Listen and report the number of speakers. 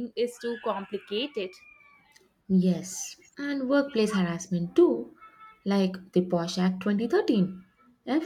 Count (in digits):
2